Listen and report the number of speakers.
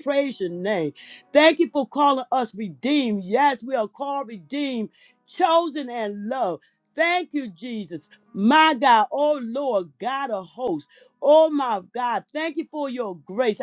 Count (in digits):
1